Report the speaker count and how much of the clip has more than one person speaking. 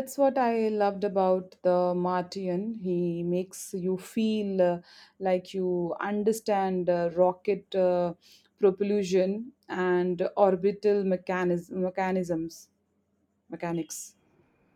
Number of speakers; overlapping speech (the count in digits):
1, no overlap